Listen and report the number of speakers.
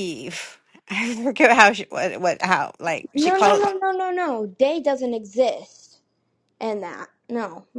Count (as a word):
two